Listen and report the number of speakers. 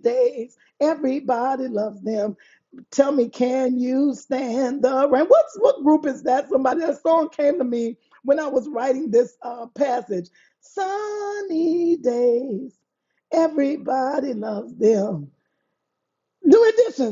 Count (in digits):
1